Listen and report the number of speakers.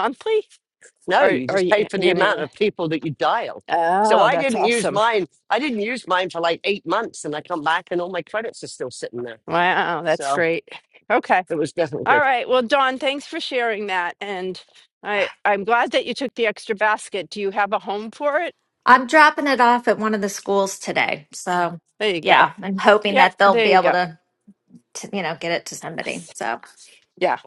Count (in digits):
3